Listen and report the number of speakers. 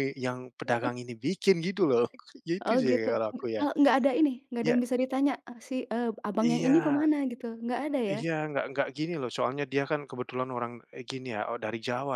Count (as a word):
two